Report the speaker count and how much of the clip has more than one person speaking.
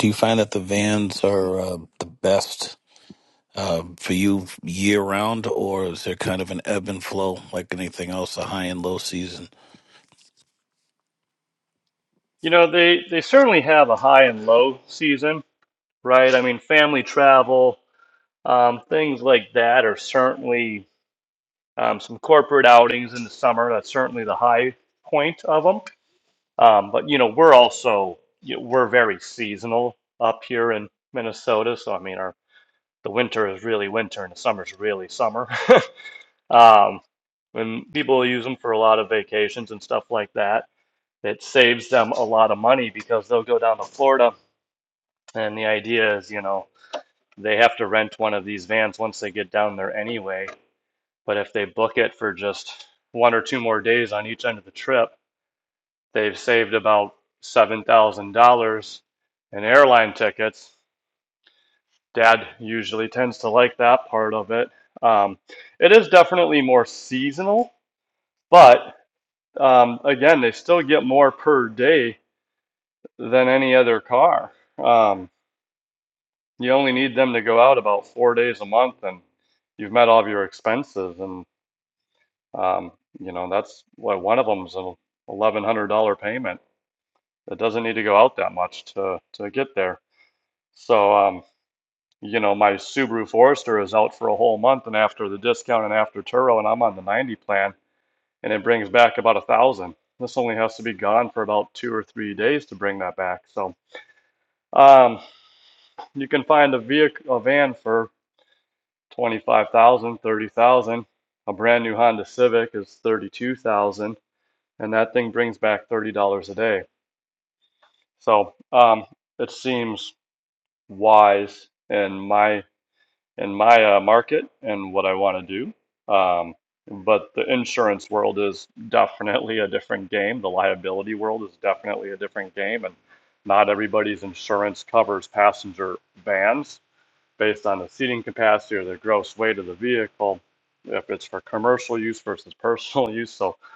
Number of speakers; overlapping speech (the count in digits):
2, no overlap